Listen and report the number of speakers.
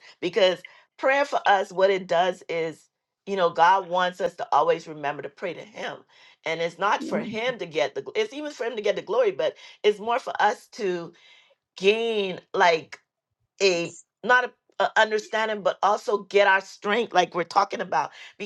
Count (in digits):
1